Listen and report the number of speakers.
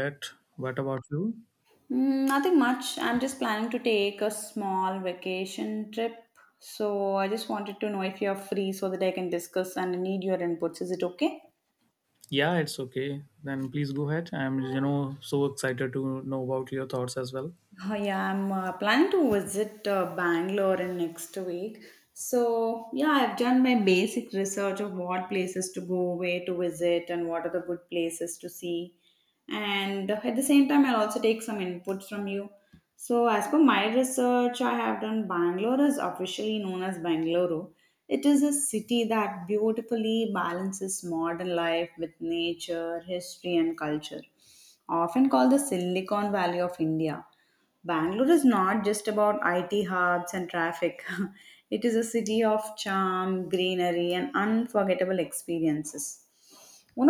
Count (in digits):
2